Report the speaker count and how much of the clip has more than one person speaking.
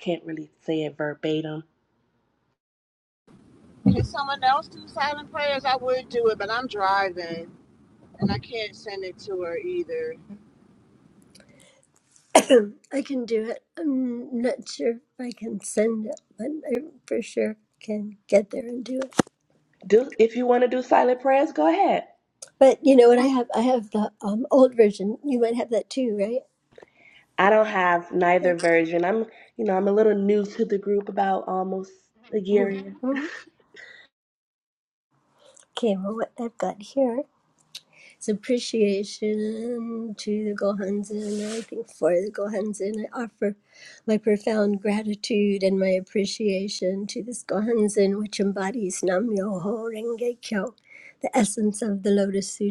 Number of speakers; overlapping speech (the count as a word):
three, about 1%